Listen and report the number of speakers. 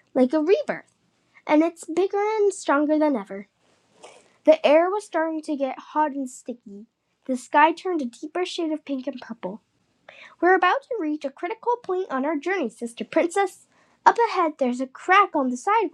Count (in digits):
1